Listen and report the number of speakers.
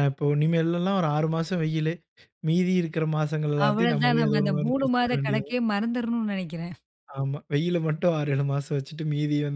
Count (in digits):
2